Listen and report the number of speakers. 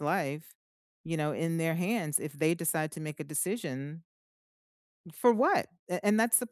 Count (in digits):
1